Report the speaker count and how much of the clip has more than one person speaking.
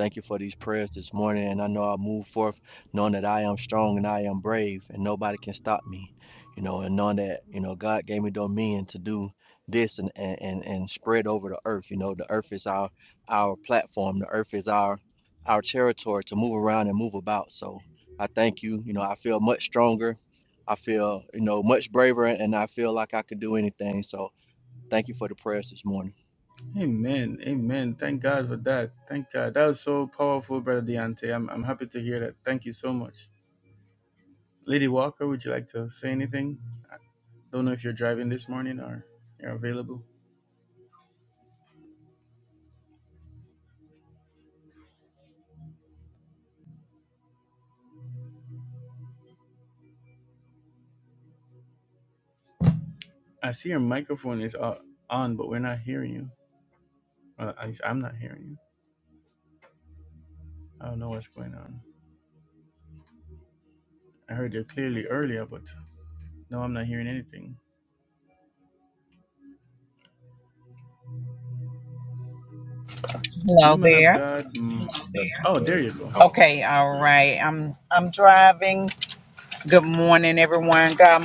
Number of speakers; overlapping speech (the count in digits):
3, about 1%